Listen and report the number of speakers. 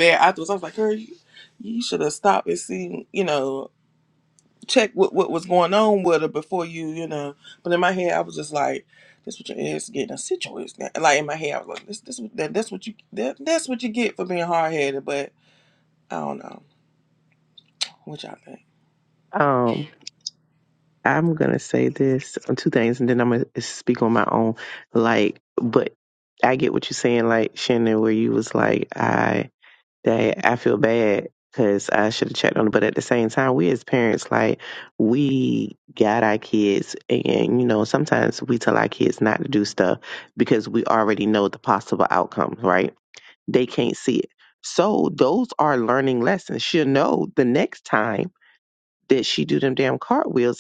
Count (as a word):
two